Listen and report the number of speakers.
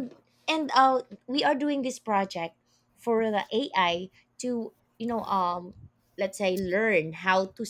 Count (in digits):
1